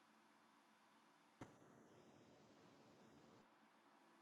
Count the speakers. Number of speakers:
zero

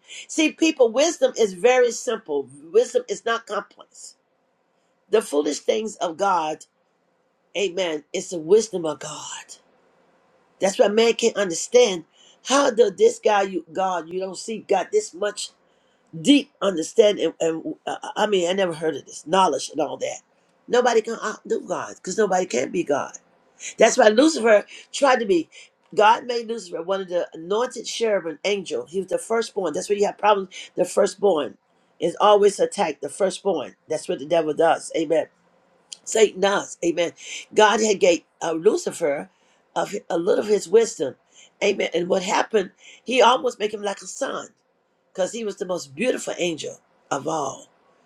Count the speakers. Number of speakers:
one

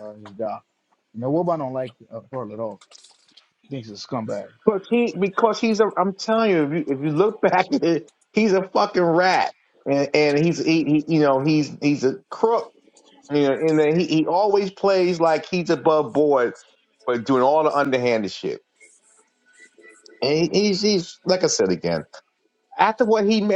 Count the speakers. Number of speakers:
two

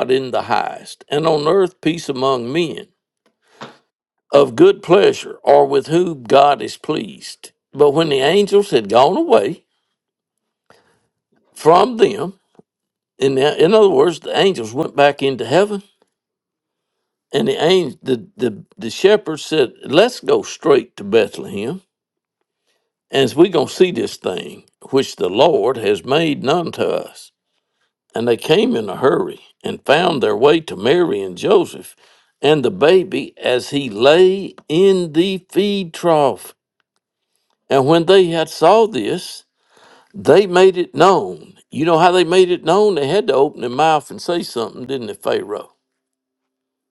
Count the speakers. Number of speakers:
one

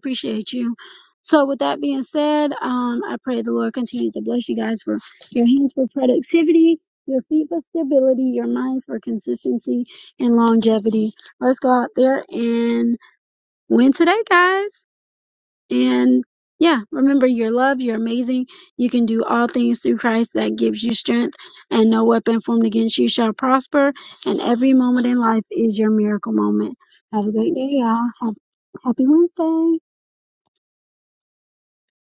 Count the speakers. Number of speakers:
one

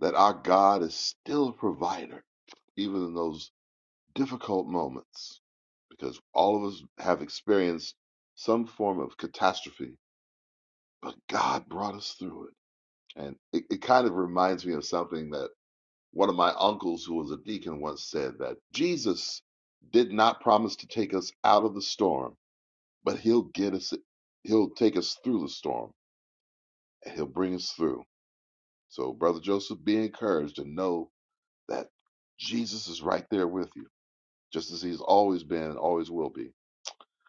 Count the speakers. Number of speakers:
one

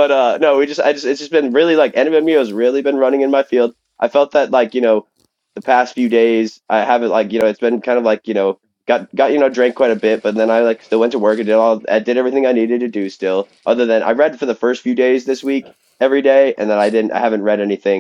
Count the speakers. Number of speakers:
one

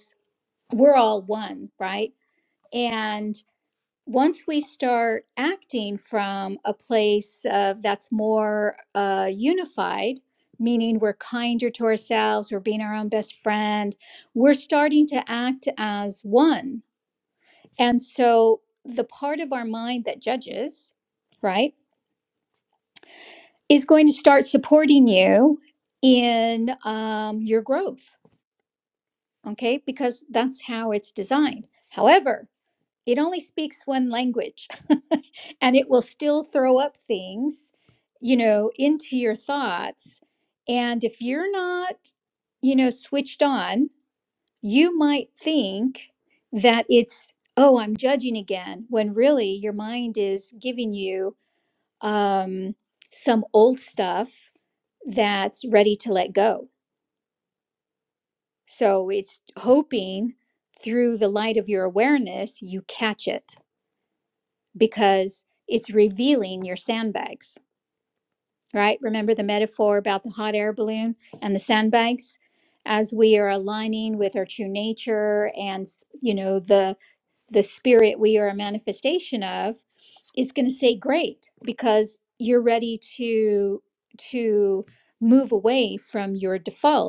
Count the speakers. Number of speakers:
one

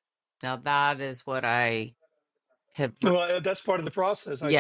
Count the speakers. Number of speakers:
two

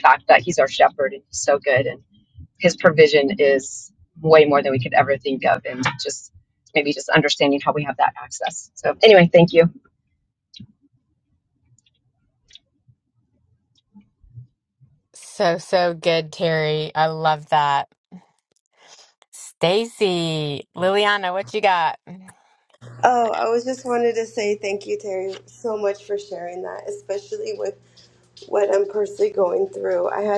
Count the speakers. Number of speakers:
three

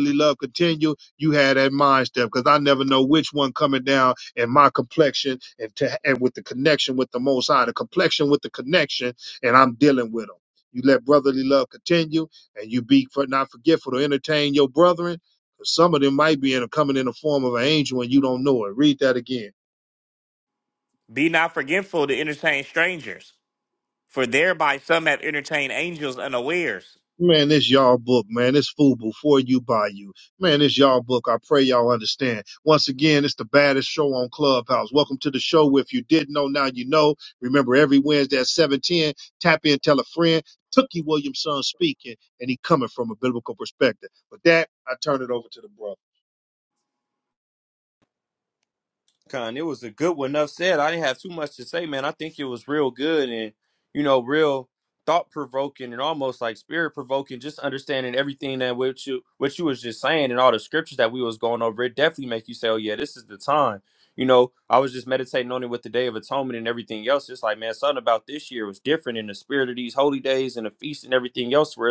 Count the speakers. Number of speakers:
three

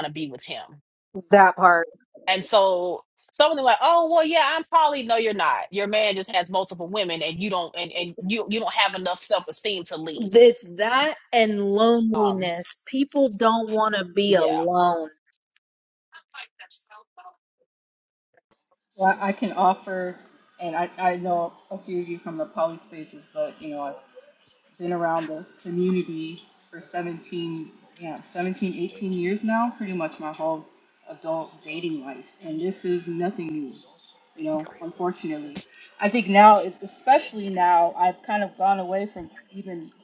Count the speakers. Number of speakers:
three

